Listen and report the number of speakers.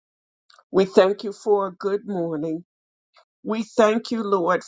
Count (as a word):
one